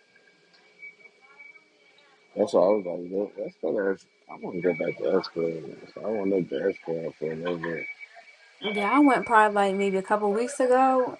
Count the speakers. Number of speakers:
2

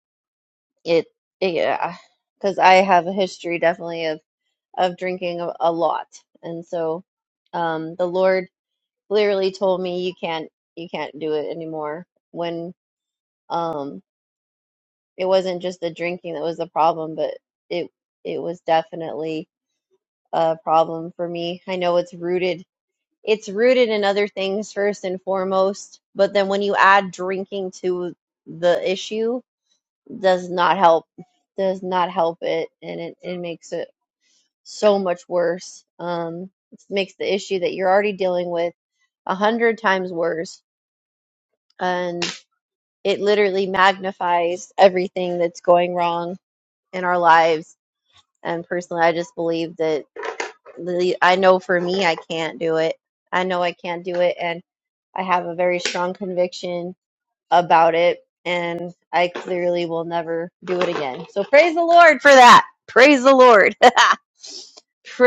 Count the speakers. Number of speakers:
1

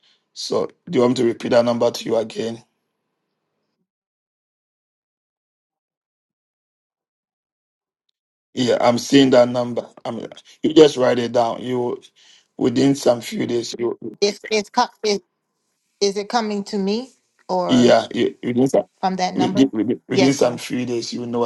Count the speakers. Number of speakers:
2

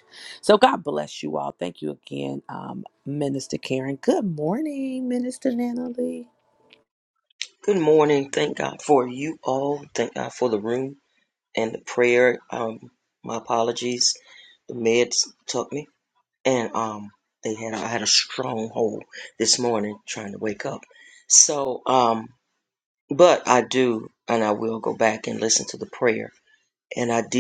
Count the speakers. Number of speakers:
2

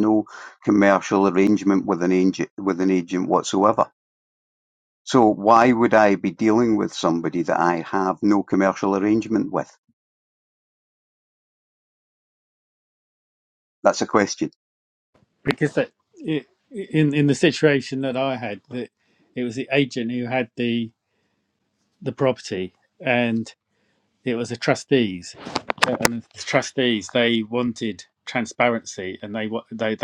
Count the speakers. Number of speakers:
2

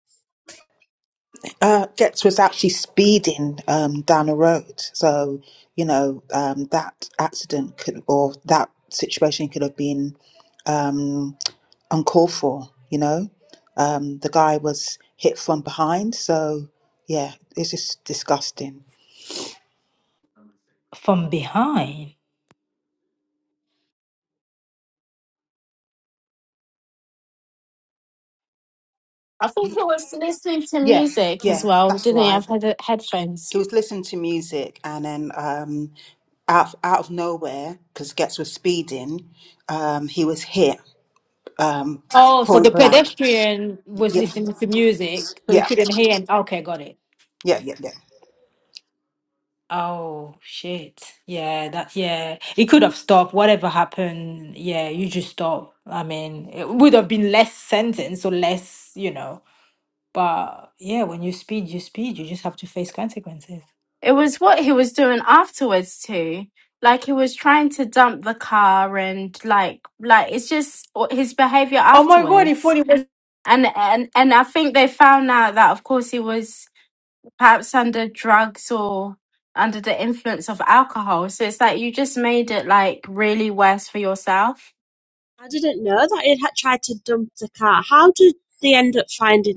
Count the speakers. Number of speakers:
4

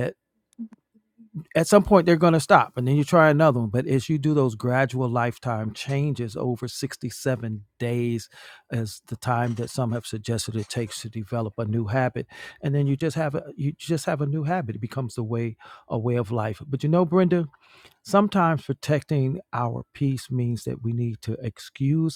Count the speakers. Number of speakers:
1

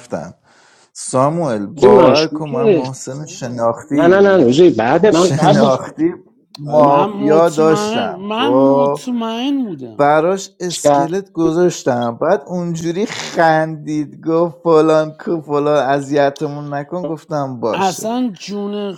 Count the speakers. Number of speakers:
3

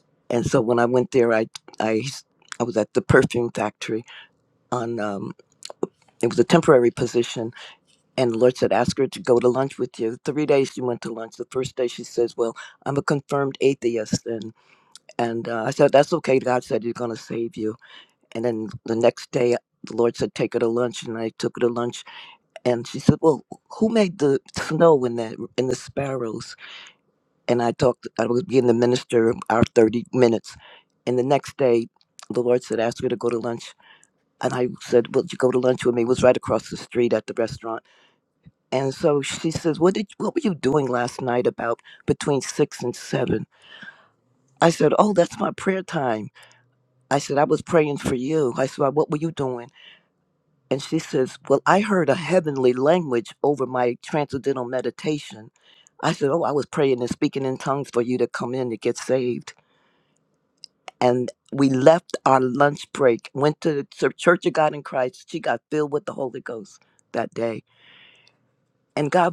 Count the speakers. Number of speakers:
1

